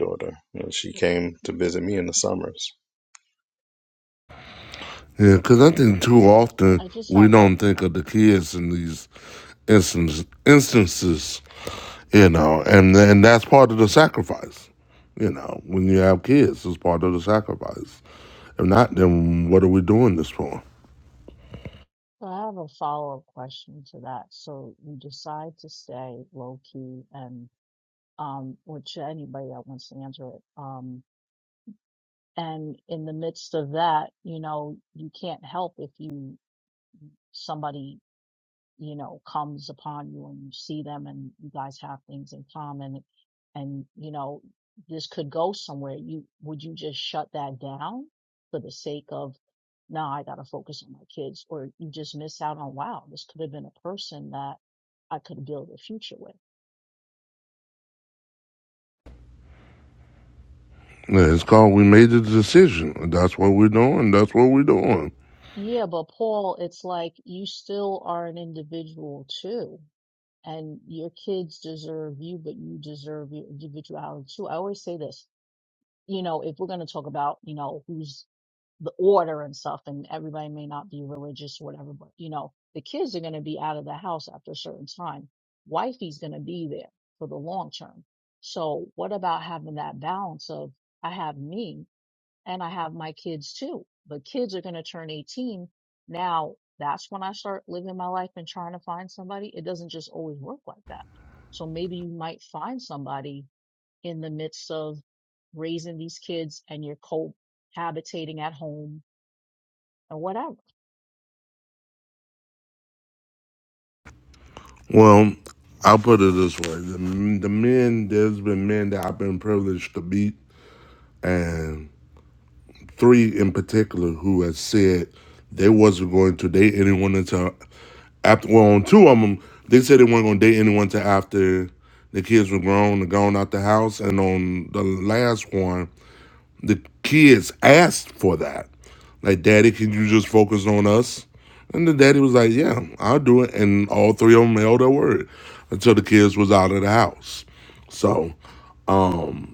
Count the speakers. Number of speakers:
3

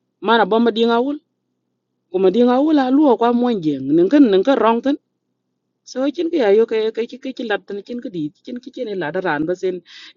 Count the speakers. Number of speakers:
1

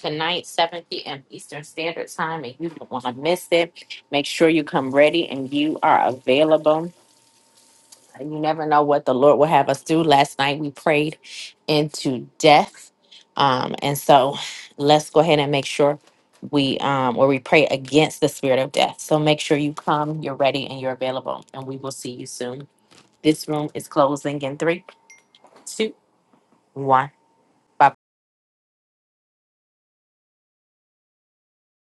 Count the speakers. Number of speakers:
1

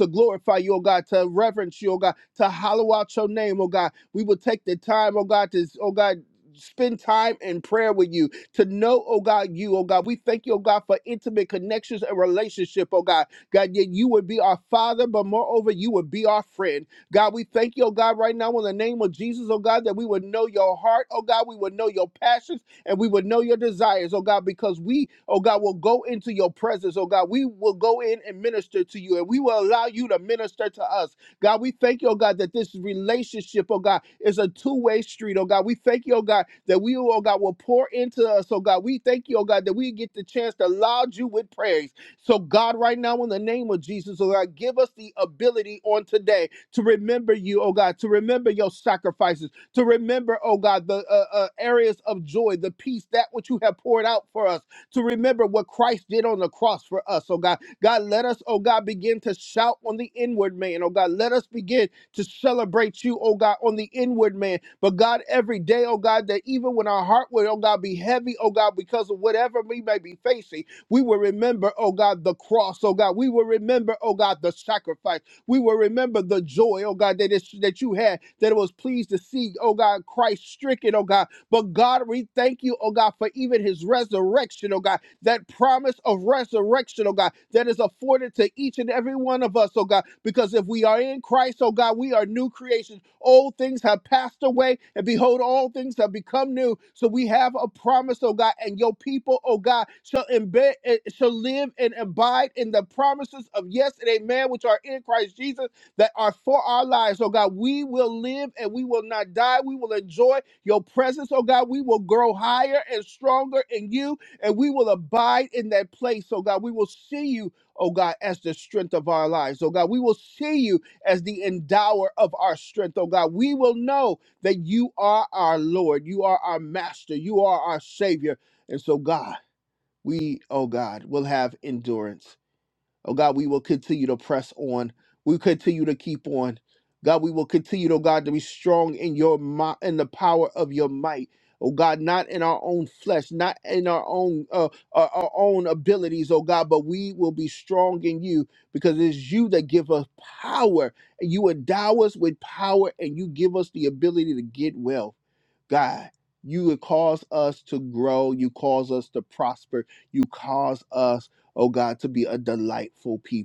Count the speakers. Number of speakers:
1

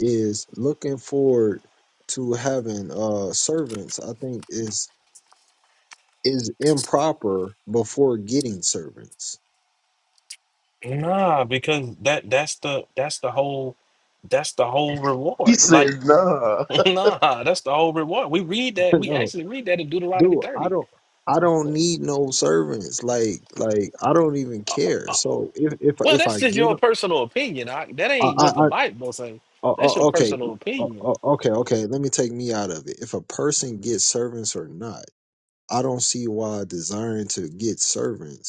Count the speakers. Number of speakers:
3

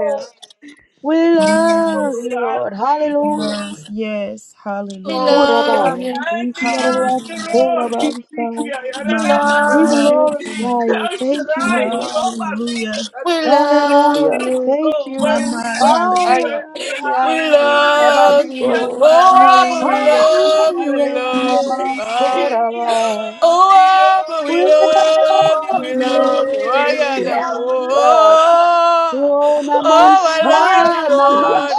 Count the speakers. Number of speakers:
4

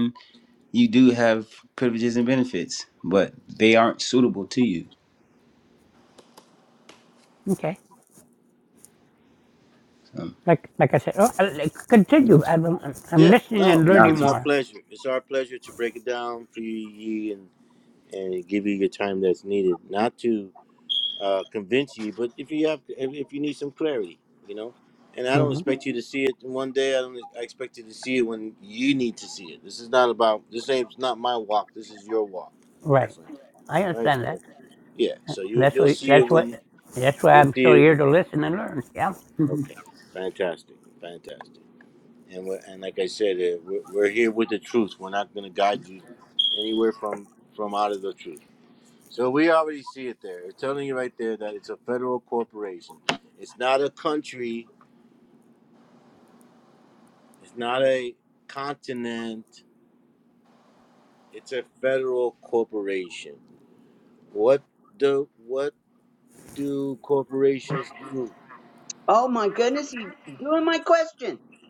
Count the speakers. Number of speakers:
4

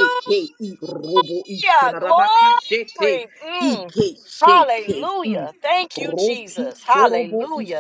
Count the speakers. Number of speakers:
2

